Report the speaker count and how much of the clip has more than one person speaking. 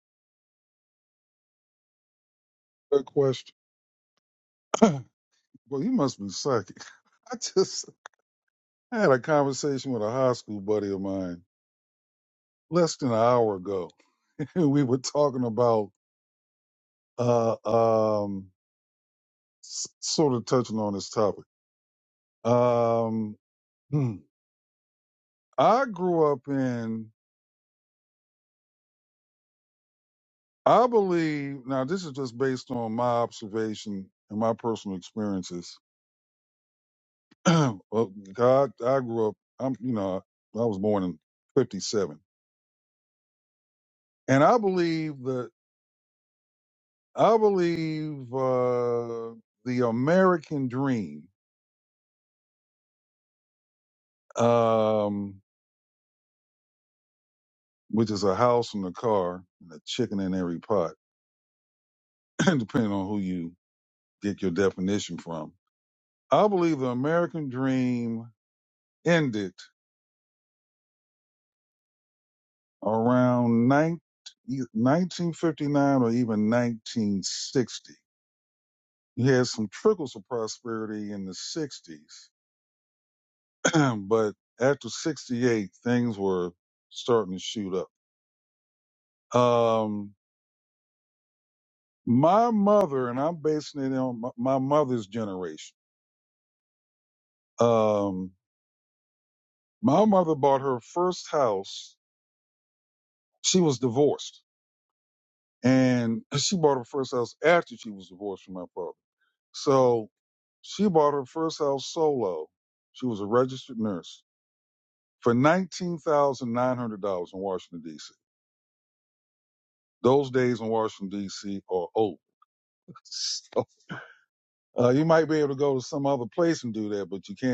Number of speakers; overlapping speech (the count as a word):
one, no overlap